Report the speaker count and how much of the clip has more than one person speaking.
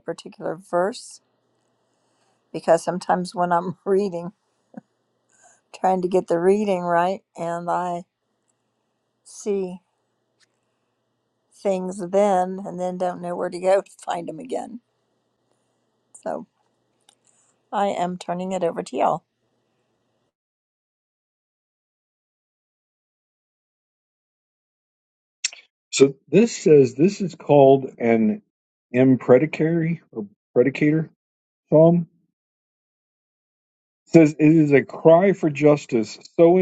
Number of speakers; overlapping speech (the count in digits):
2, no overlap